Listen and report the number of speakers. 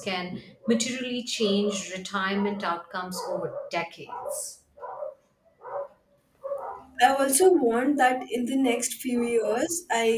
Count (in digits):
2